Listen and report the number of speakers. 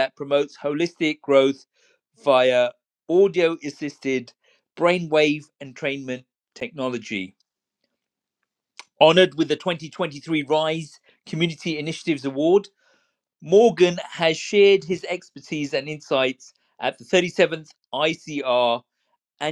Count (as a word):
one